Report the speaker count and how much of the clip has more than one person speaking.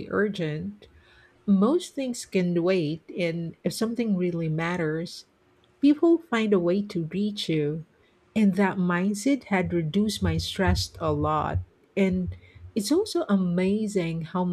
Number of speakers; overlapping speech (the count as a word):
one, no overlap